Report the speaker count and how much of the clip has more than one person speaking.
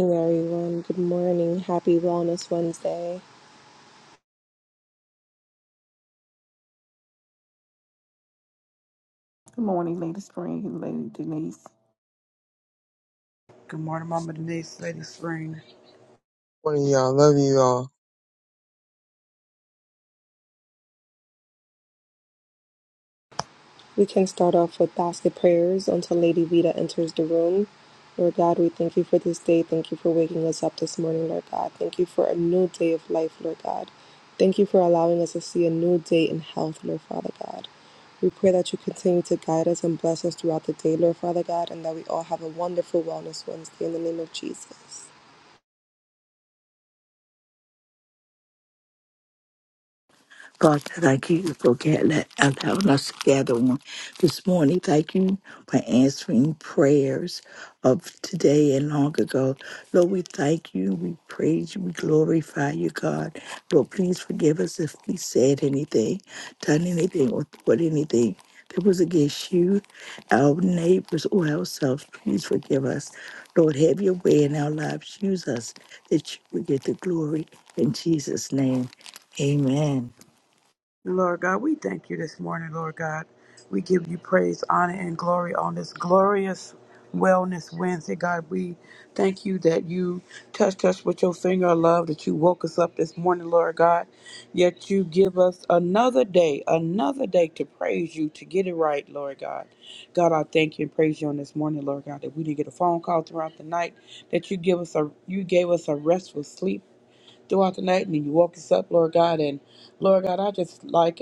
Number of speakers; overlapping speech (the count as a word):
five, no overlap